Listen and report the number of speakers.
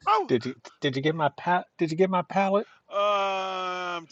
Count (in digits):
2